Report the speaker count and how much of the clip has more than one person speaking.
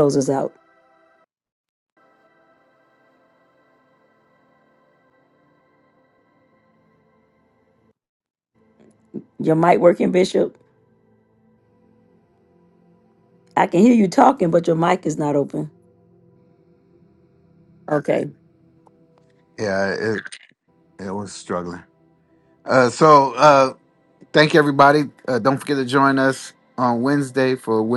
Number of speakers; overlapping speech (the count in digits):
2, no overlap